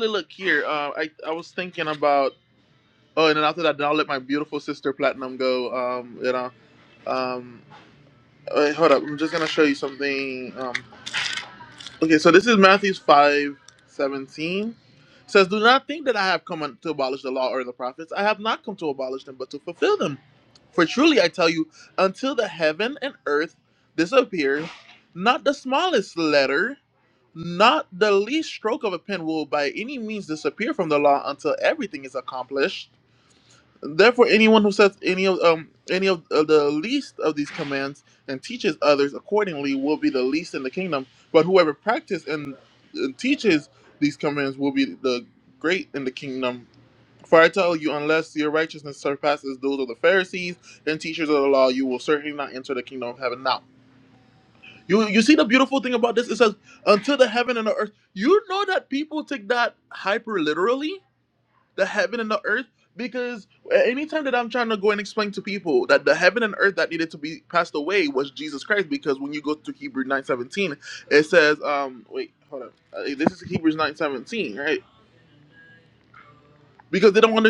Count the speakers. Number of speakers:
one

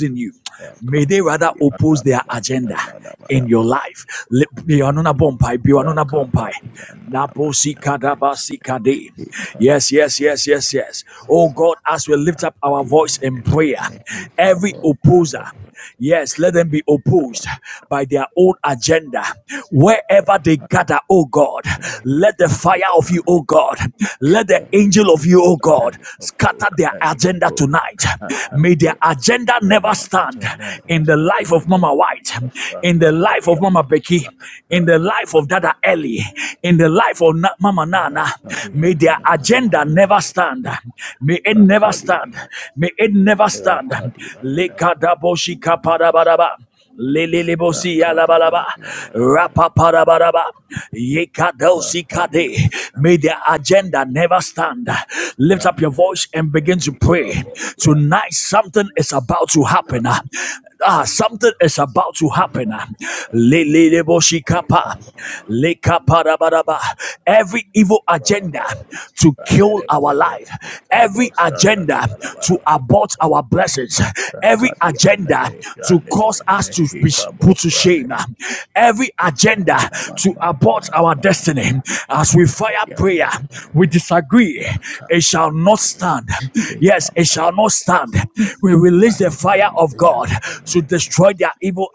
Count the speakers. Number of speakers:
two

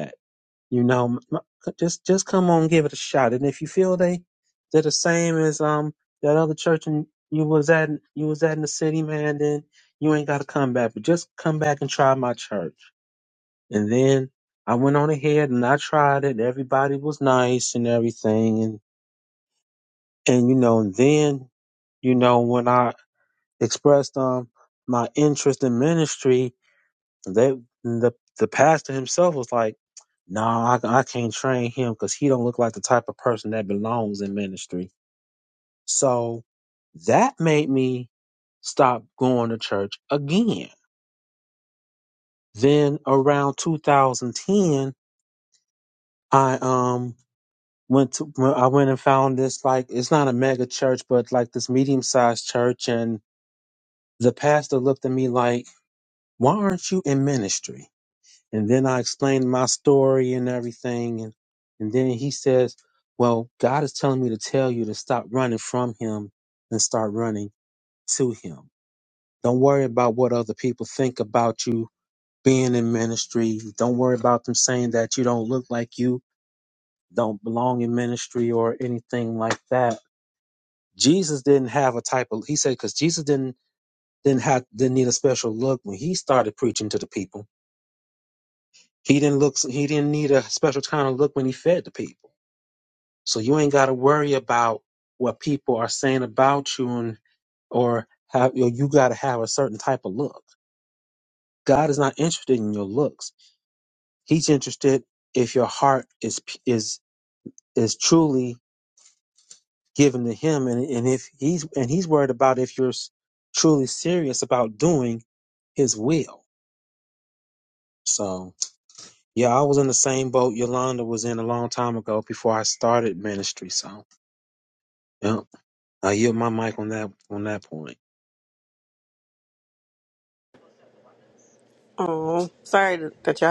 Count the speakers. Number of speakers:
two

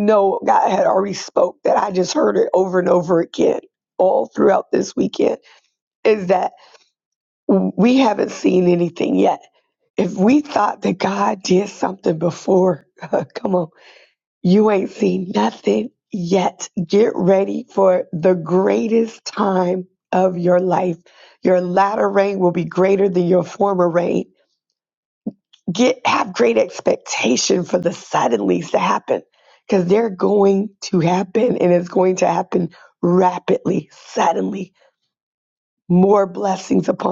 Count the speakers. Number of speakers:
one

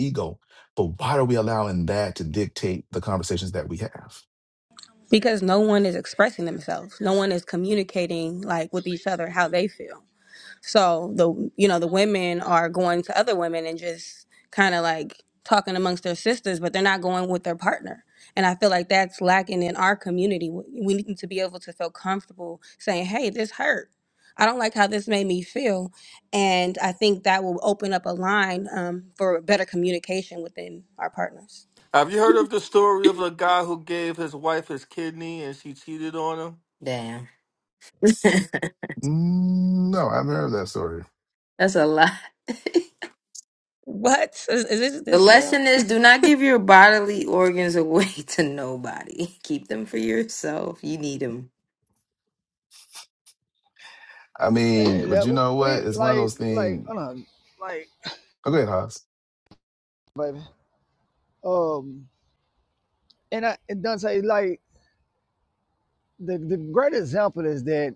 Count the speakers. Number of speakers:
five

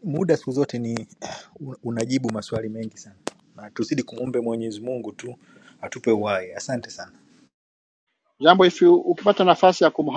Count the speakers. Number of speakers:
two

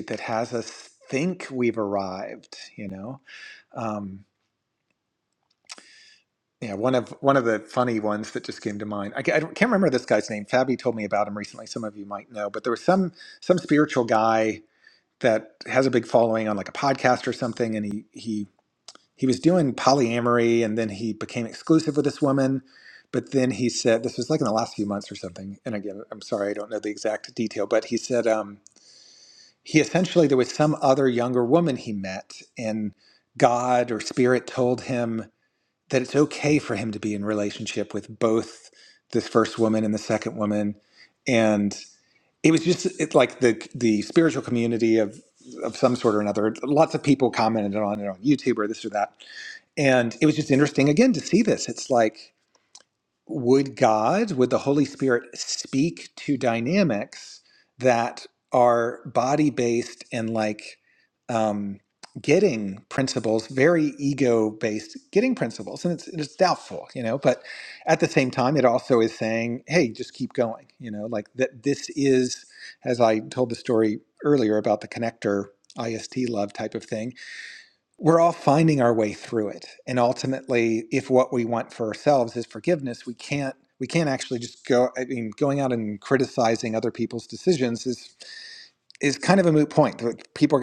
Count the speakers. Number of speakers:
one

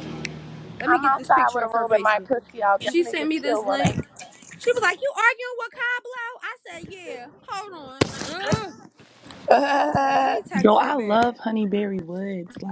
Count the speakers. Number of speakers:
three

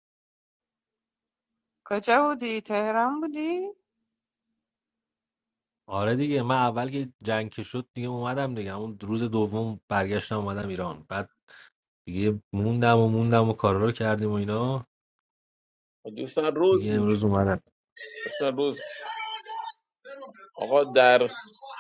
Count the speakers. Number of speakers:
three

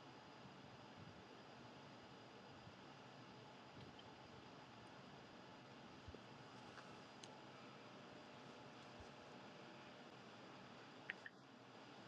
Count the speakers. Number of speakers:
zero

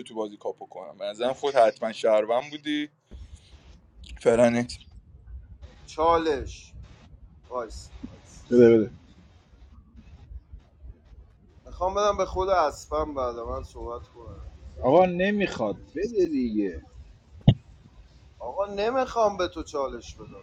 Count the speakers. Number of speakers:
three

